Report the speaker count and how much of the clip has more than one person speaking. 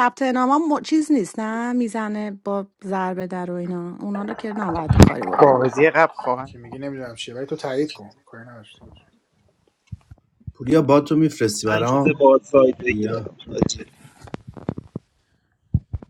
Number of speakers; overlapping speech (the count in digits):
5, about 7%